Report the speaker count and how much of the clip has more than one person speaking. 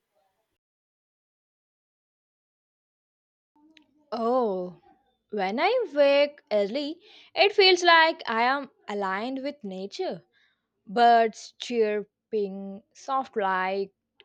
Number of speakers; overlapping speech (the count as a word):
one, no overlap